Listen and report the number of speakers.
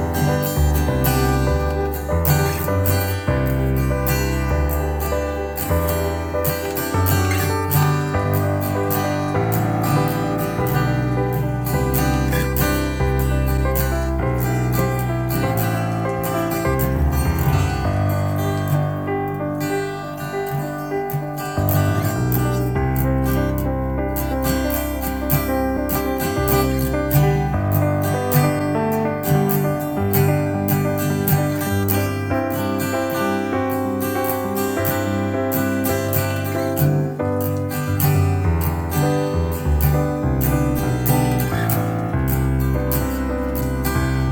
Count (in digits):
0